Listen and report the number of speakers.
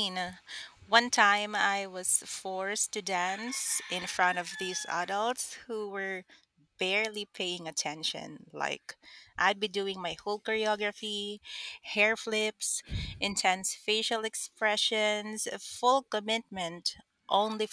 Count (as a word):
one